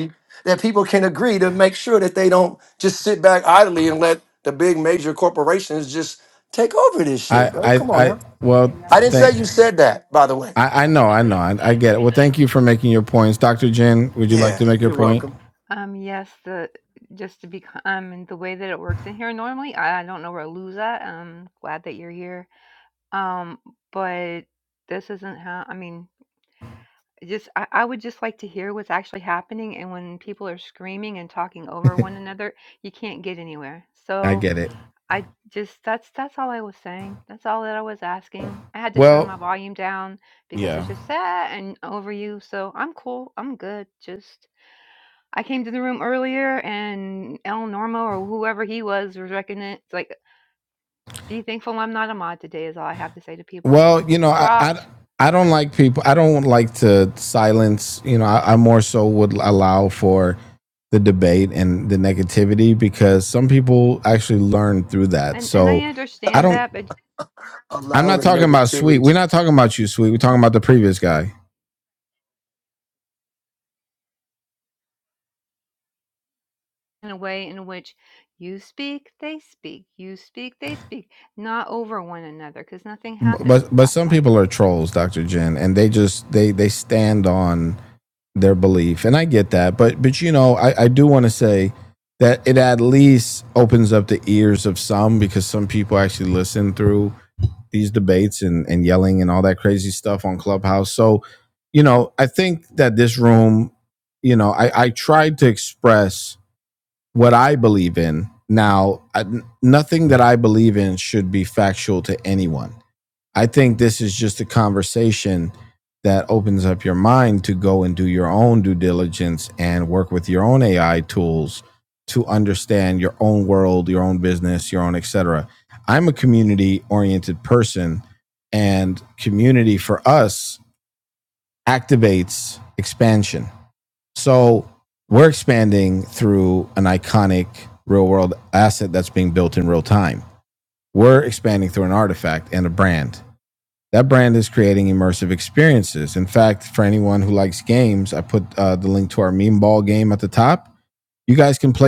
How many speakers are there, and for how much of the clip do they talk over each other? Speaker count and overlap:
3, about 4%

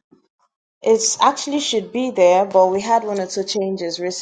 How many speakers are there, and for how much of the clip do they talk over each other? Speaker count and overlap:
1, no overlap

